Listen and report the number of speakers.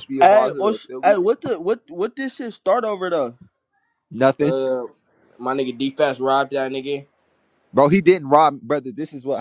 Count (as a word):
three